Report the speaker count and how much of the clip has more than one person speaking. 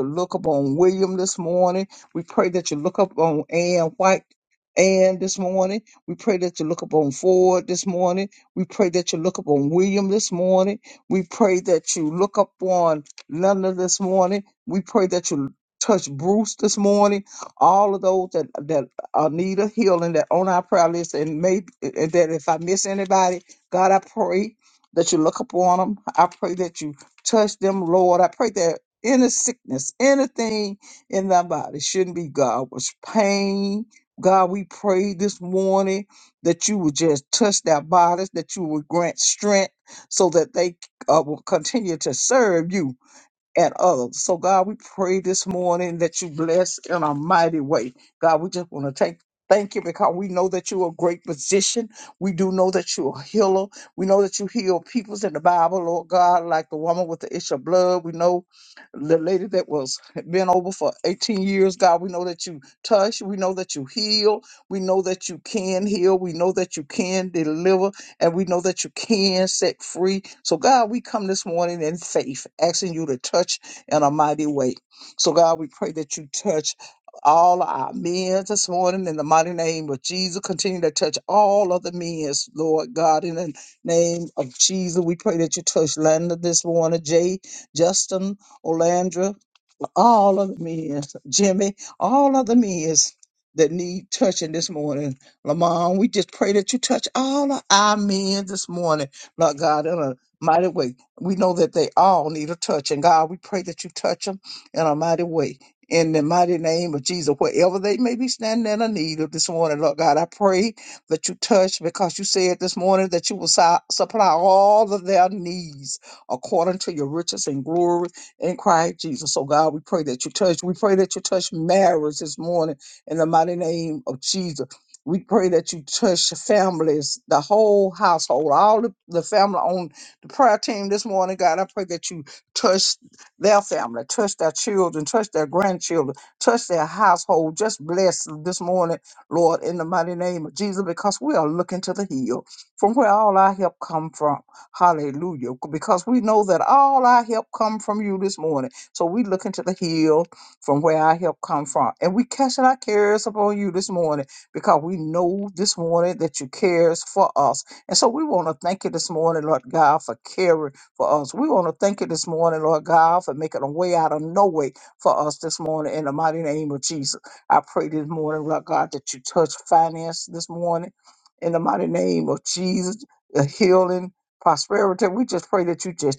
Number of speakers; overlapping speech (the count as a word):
one, no overlap